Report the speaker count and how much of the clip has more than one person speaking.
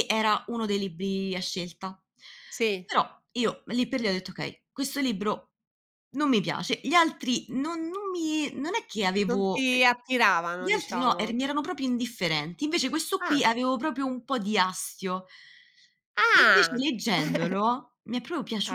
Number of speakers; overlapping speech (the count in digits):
2, about 11%